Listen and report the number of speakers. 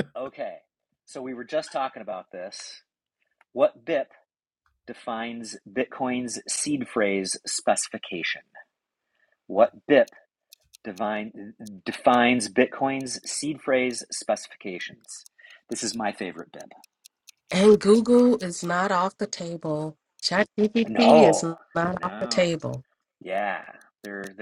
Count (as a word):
two